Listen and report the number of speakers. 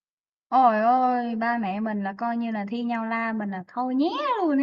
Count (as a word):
one